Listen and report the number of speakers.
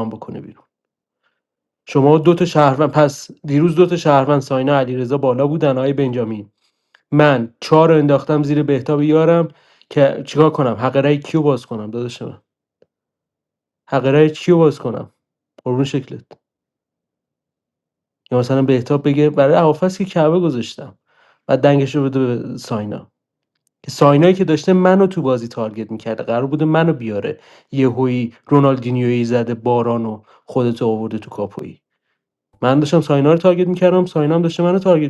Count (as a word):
one